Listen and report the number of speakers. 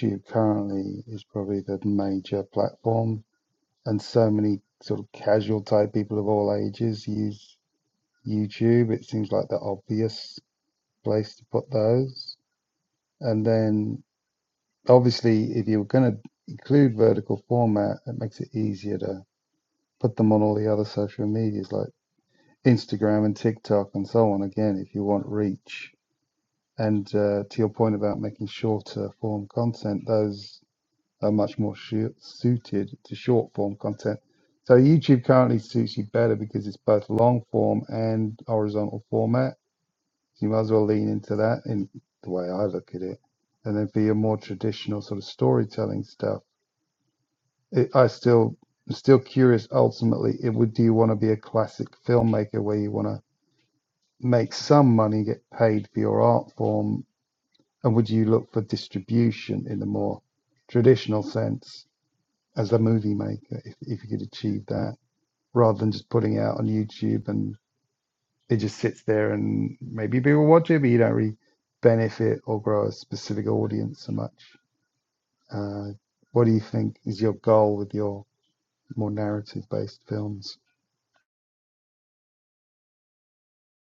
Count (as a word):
one